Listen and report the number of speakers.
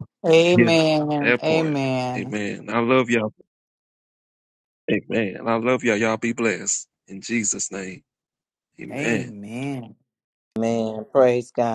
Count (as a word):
three